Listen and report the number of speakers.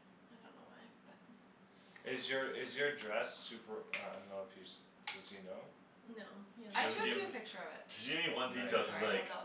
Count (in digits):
4